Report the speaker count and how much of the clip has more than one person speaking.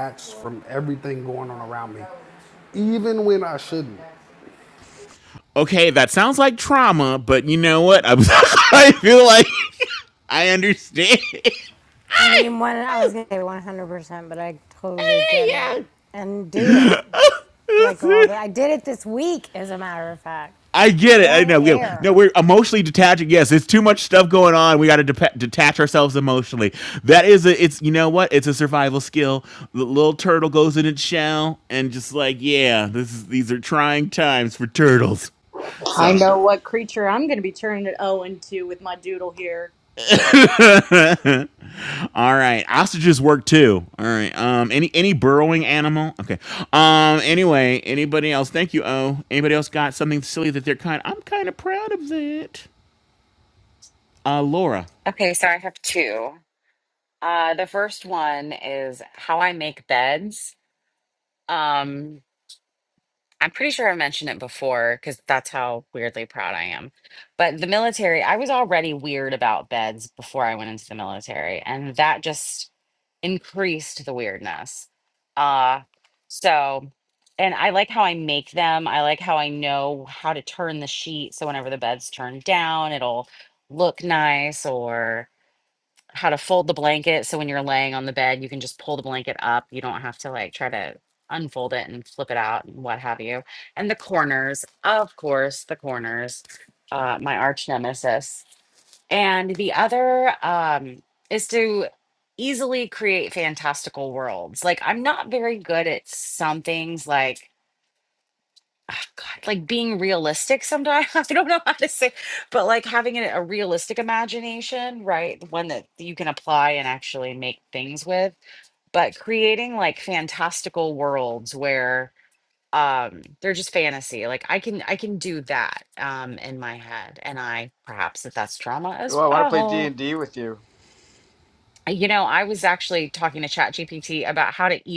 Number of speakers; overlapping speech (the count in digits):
6, about 2%